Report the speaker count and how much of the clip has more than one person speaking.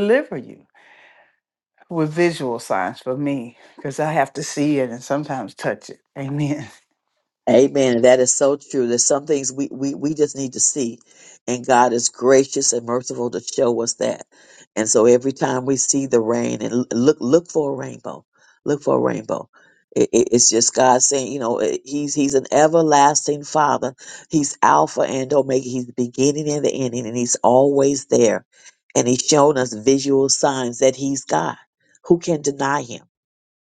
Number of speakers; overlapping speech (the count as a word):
two, no overlap